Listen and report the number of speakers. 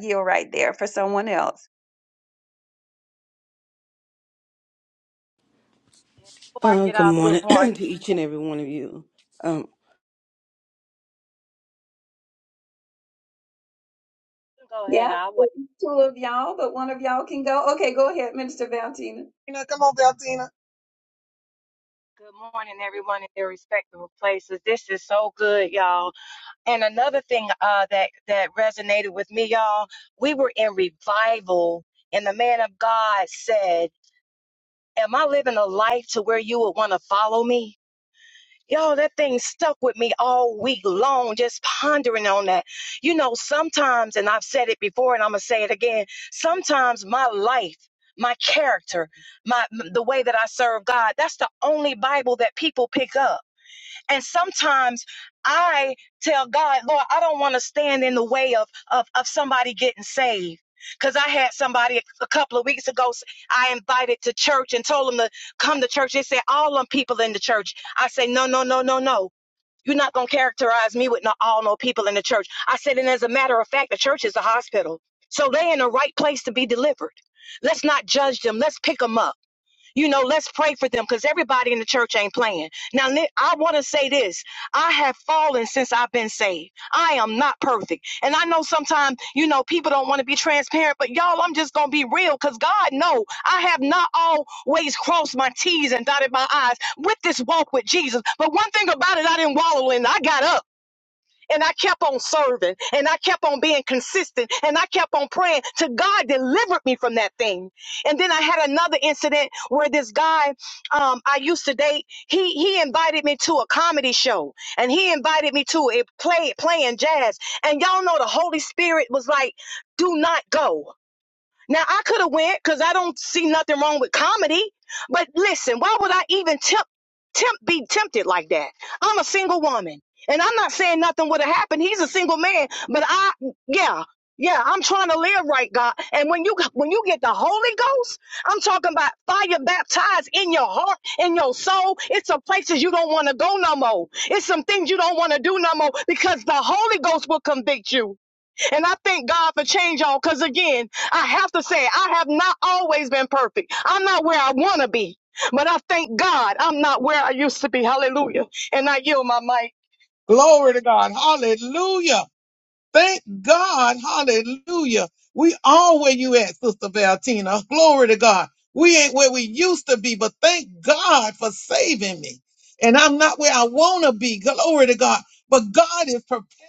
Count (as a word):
four